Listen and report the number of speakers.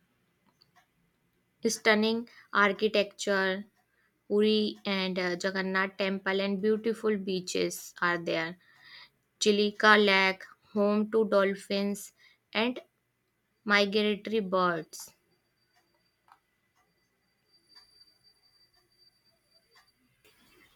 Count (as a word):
one